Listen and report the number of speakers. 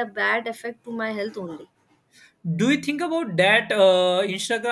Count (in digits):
2